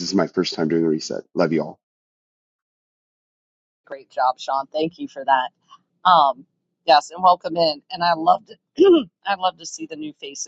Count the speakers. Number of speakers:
two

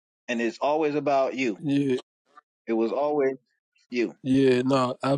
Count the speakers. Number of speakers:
two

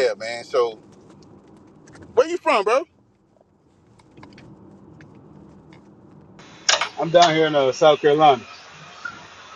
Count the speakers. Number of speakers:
two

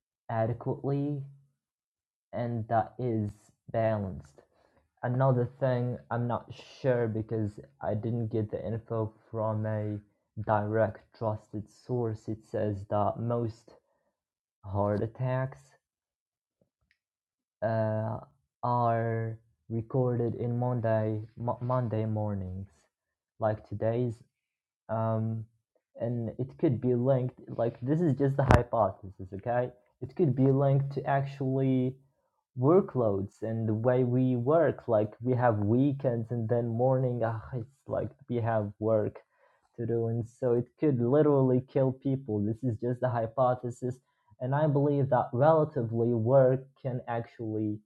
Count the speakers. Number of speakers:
one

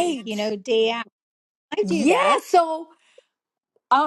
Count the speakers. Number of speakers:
two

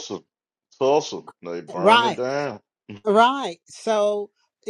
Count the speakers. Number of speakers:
two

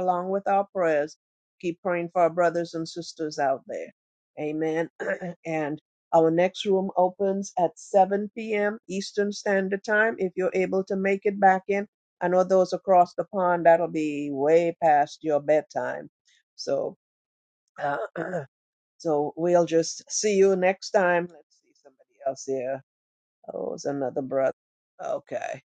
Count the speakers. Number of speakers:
one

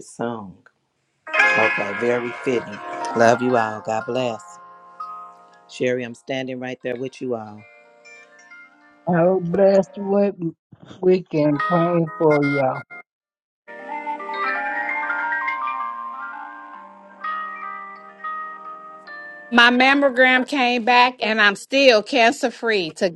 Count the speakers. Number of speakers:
three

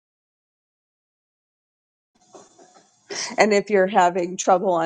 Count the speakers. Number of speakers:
one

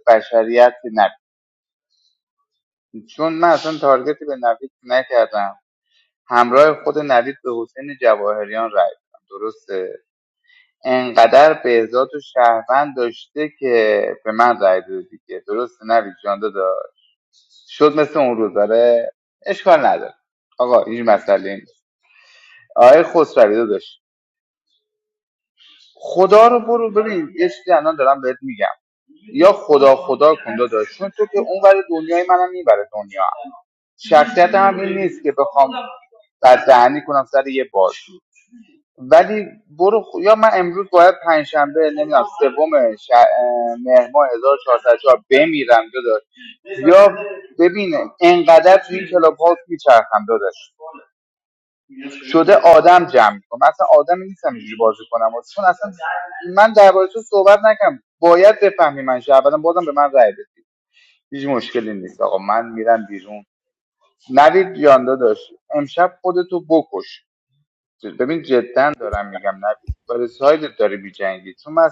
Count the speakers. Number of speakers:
one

